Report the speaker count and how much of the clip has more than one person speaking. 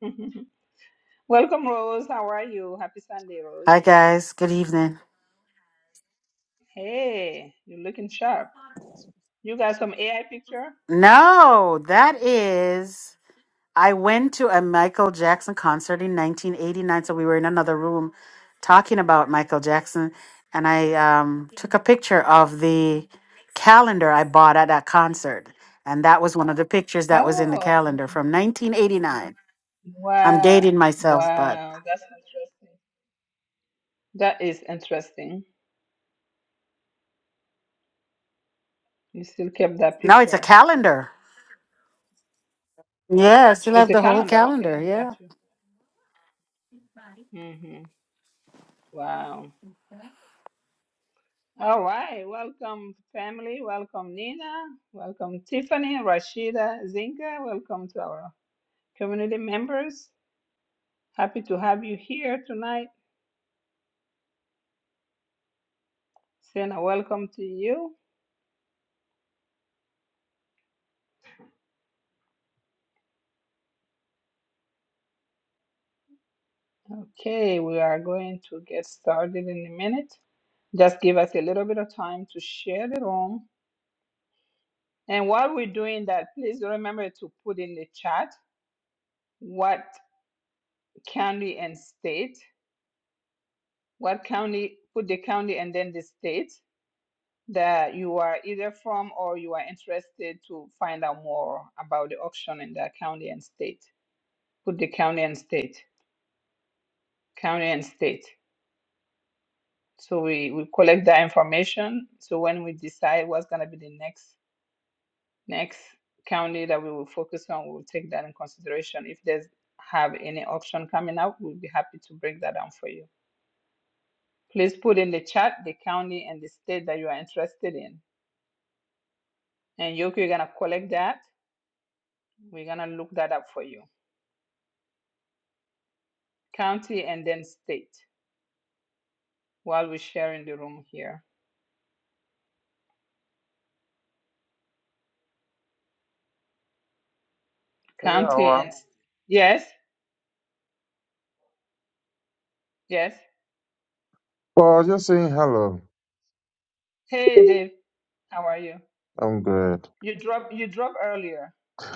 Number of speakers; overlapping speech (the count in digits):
3, about 3%